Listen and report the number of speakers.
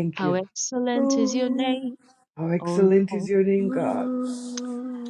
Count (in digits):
3